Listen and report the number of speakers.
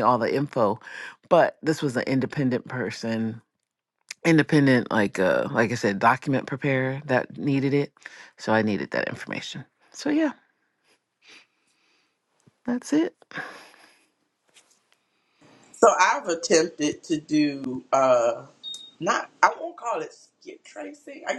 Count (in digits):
2